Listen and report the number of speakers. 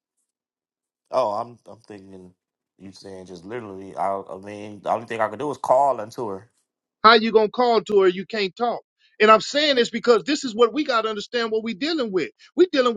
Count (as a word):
two